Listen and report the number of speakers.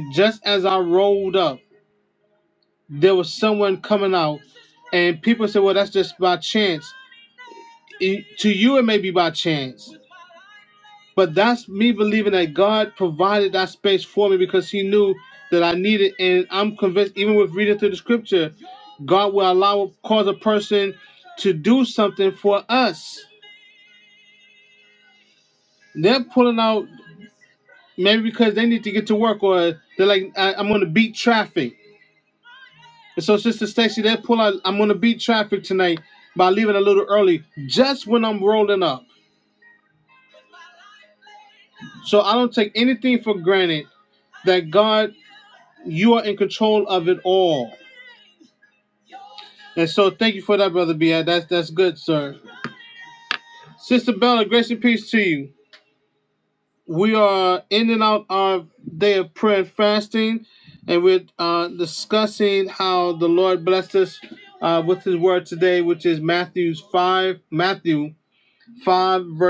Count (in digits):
1